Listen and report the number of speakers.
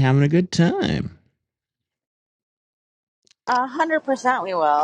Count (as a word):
two